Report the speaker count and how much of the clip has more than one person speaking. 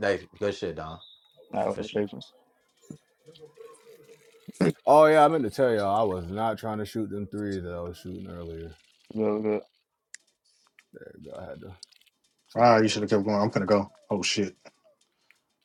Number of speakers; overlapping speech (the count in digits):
4, about 4%